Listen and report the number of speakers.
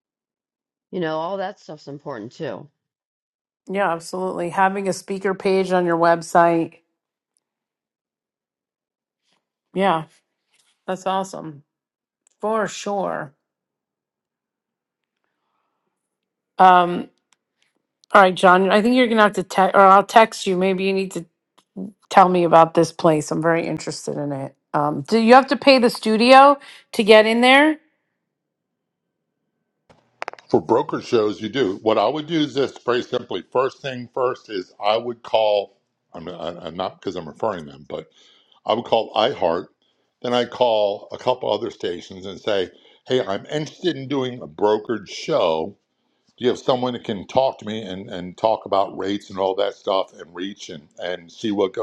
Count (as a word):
three